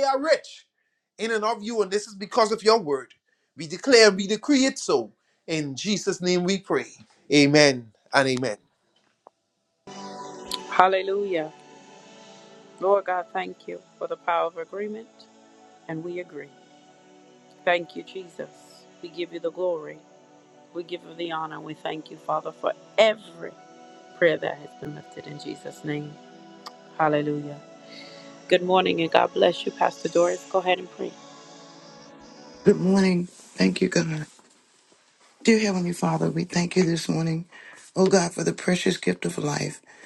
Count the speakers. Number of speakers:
3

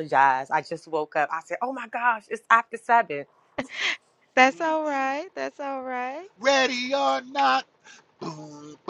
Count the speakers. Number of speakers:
3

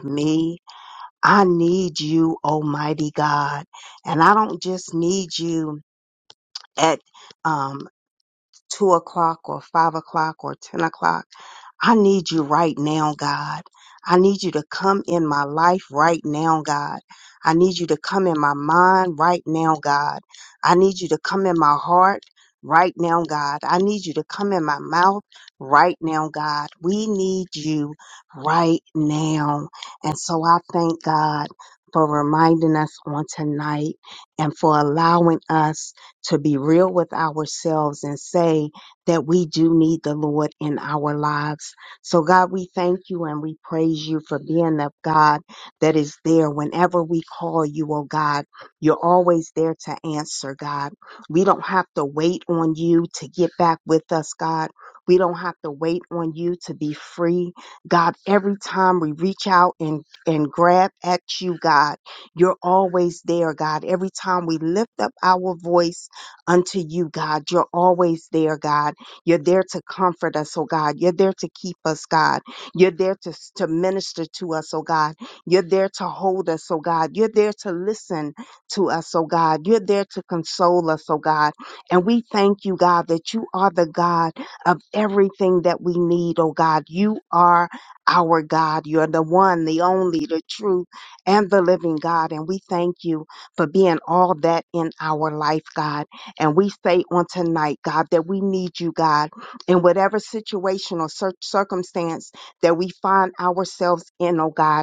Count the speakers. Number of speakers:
1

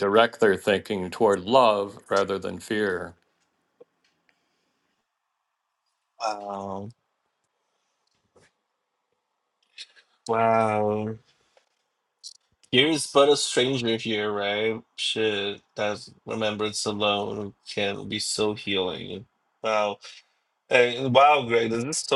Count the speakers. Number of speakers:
2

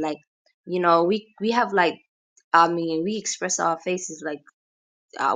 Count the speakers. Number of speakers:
1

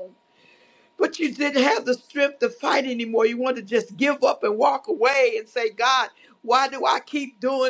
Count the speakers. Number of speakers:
1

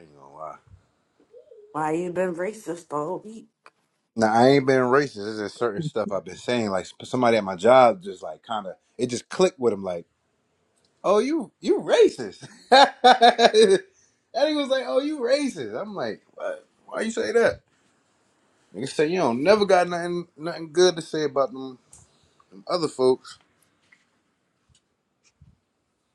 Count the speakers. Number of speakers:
2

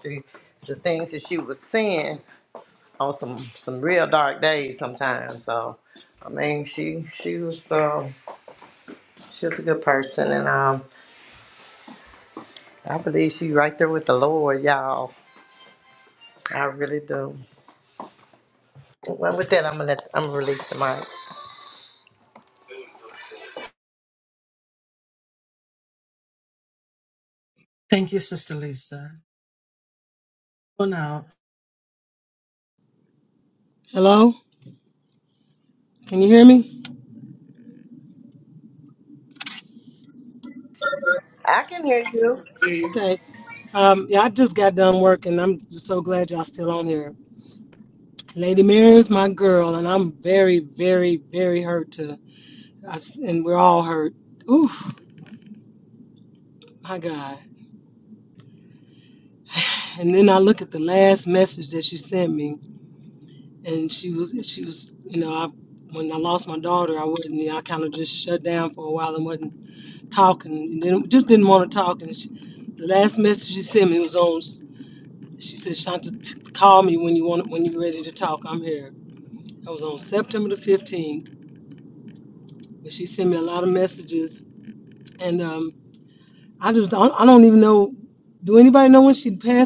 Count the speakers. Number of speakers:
3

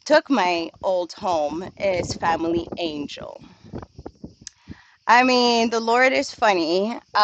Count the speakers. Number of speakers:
1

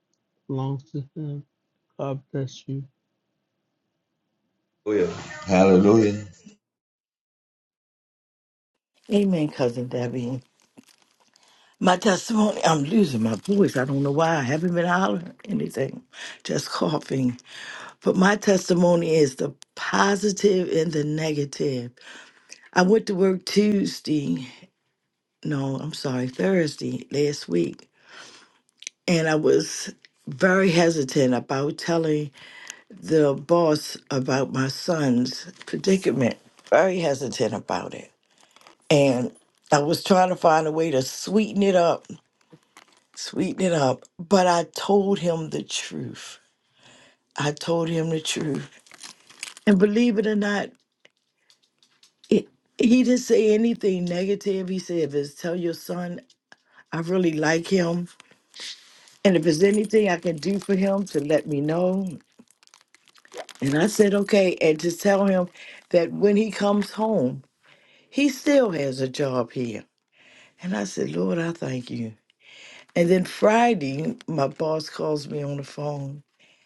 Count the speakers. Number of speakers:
3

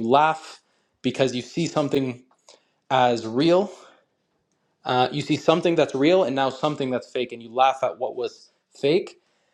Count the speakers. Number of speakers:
1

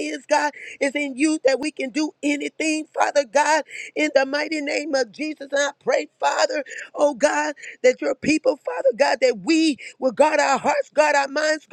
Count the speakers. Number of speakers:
1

